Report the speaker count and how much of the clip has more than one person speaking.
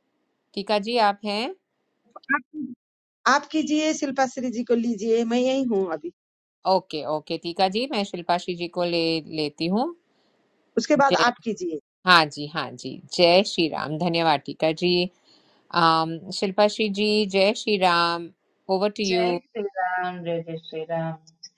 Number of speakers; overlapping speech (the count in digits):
3, about 2%